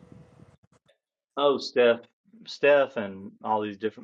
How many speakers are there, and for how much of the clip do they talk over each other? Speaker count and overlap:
1, no overlap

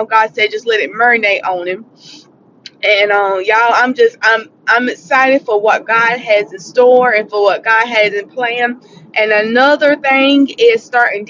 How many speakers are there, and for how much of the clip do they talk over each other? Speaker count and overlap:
1, no overlap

